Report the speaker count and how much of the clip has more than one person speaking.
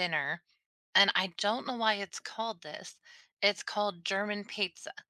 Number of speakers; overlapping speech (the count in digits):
1, no overlap